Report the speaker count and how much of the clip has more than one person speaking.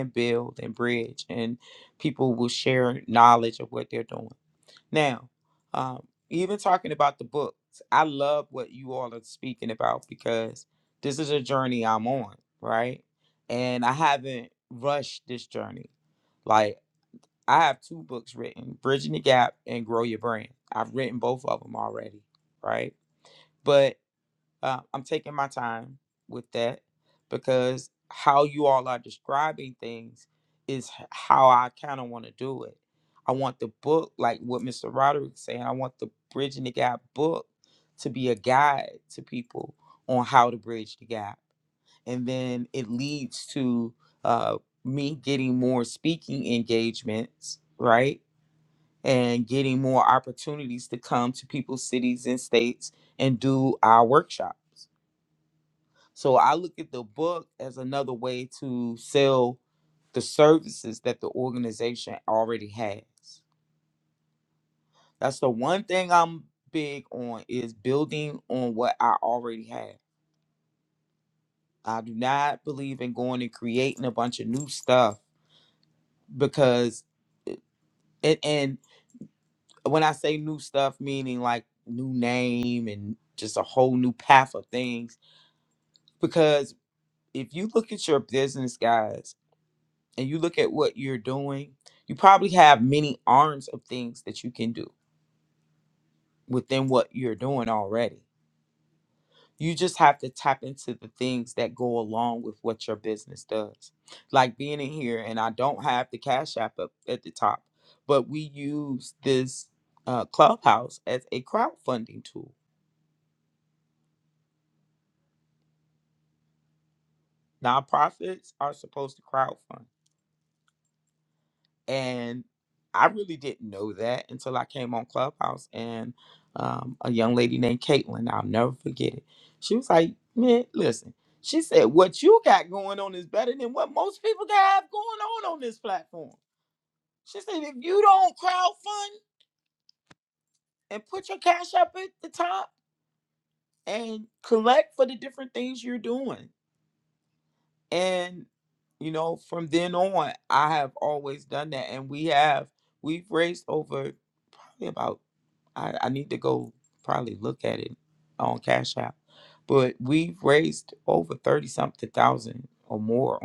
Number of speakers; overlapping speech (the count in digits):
1, no overlap